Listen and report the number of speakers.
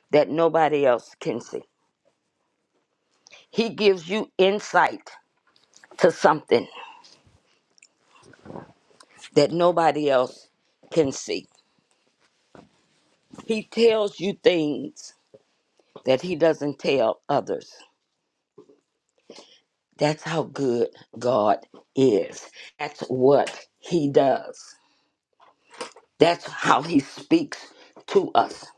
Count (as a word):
one